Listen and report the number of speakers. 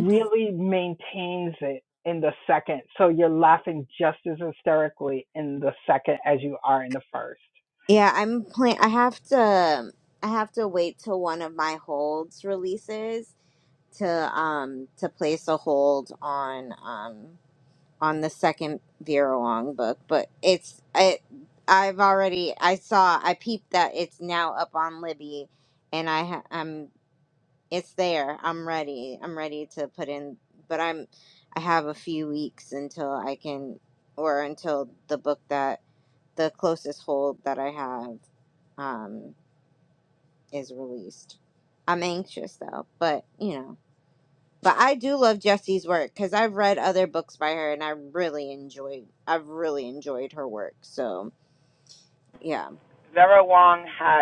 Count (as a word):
three